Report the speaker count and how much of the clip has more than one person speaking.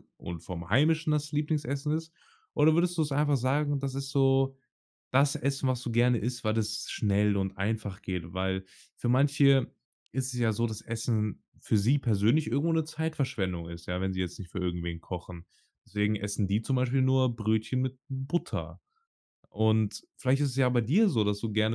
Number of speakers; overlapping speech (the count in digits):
1, no overlap